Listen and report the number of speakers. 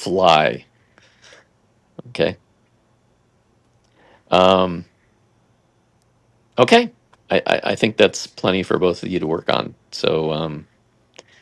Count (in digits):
1